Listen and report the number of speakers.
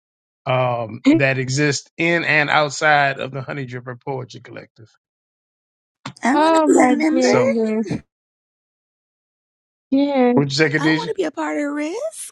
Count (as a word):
three